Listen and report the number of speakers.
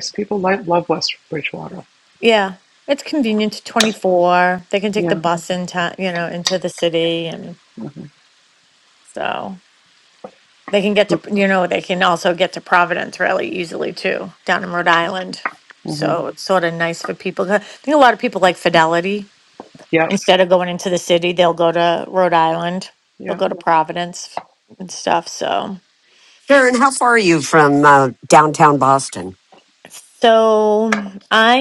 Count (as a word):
three